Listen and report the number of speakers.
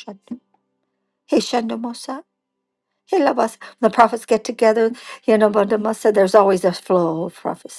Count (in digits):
1